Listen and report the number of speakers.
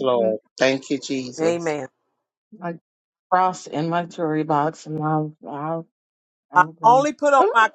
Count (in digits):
3